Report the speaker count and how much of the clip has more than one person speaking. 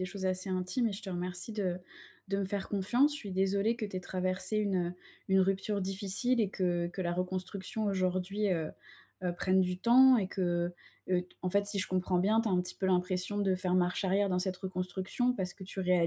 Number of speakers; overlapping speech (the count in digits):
1, no overlap